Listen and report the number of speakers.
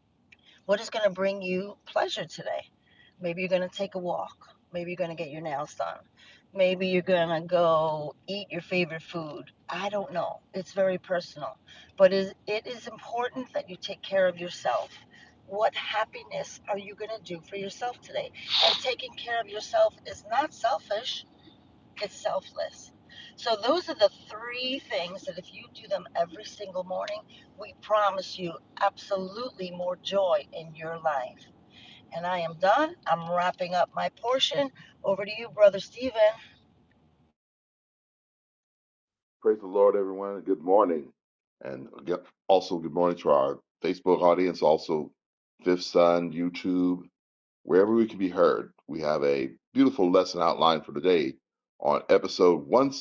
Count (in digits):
2